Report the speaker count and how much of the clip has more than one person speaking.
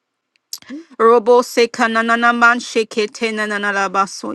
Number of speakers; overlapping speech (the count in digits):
1, no overlap